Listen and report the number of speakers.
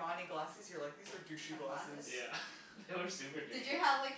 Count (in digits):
3